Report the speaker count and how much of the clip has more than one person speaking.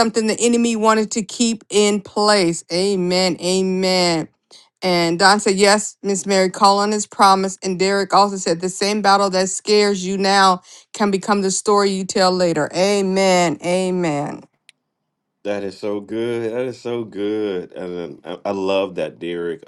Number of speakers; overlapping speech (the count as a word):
two, no overlap